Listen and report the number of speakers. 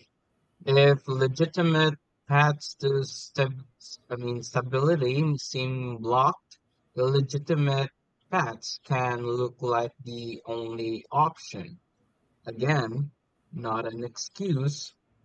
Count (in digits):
1